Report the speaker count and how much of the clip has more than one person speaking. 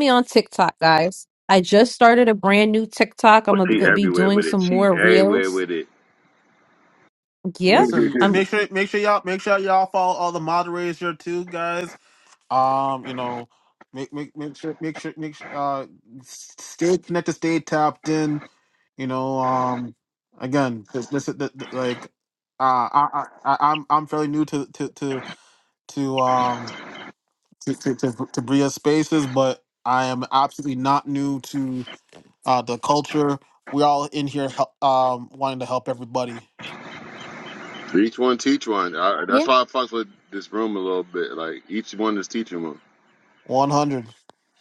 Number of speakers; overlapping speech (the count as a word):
three, about 5%